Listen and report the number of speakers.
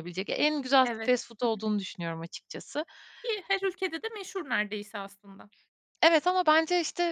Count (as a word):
two